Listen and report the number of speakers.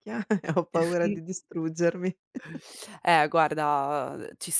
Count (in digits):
2